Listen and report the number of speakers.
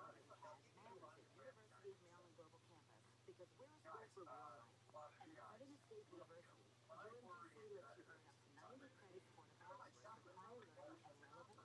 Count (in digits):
0